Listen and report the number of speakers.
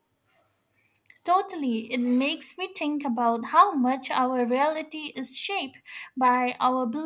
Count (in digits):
1